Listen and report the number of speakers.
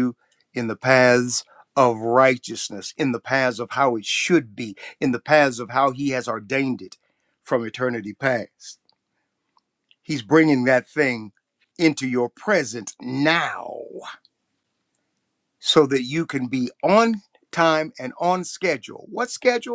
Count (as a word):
one